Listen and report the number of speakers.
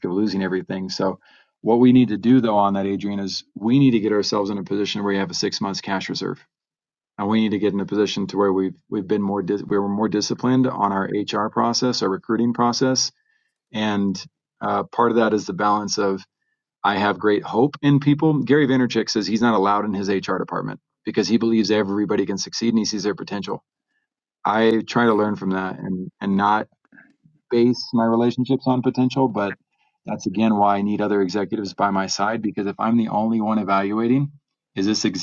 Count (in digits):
1